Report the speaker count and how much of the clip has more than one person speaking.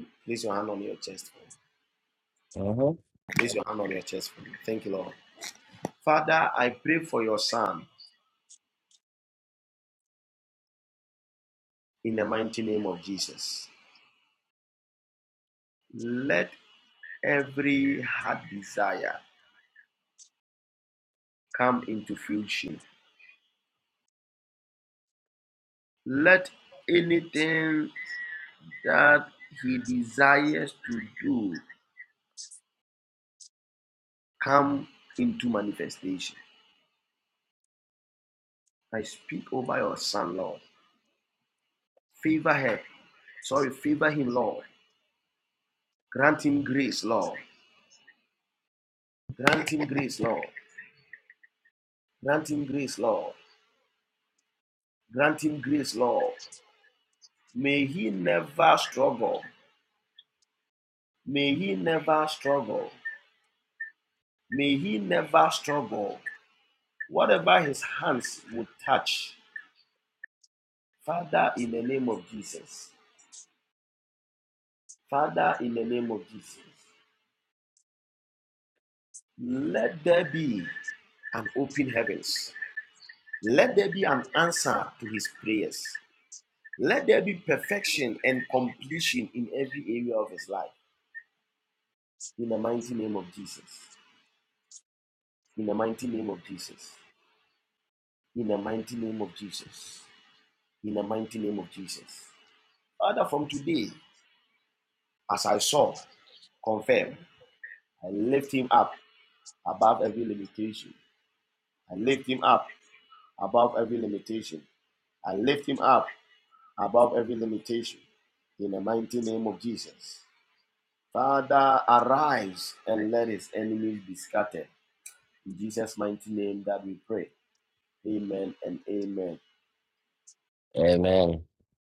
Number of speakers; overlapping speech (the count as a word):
two, no overlap